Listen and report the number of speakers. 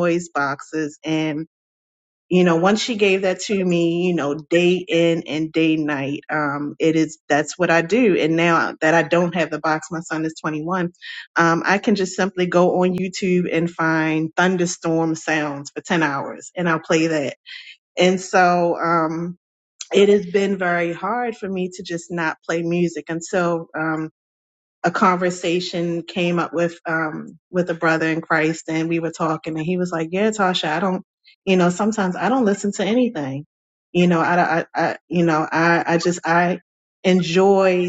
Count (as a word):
one